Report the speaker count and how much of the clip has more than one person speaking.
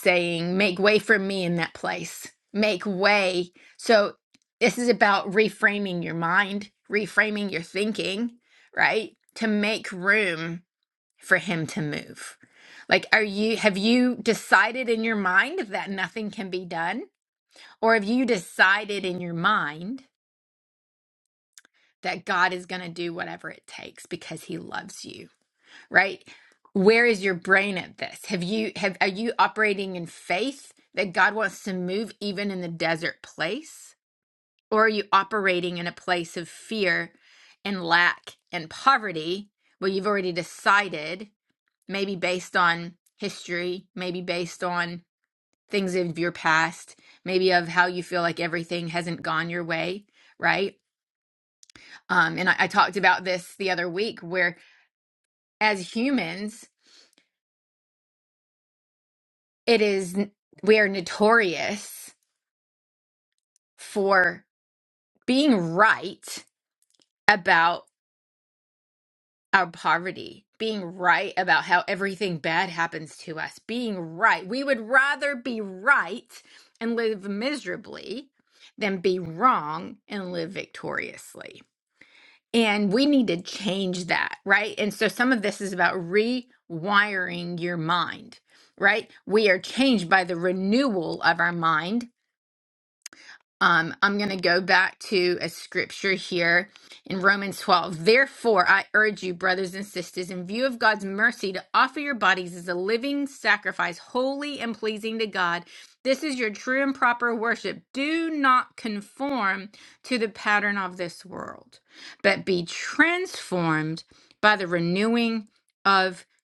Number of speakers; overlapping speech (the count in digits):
1, no overlap